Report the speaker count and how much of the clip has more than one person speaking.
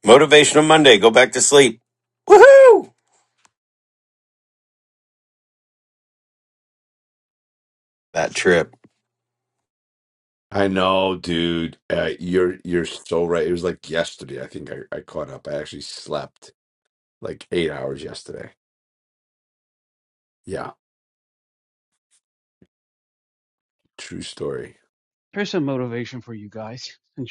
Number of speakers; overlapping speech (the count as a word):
three, no overlap